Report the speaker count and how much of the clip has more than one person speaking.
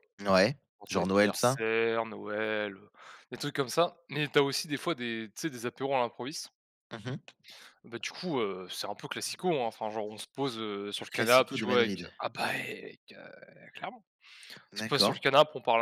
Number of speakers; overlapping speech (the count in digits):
2, about 14%